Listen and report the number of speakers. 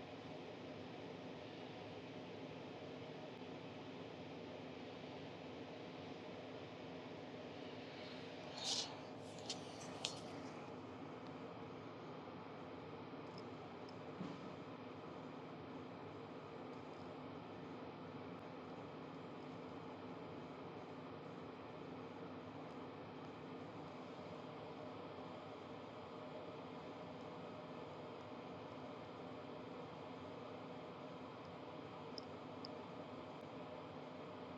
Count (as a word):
zero